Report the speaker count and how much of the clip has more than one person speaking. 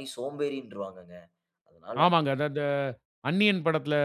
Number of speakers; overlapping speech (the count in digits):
2, about 1%